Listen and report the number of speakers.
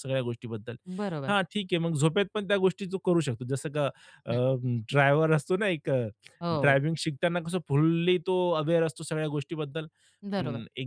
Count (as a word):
two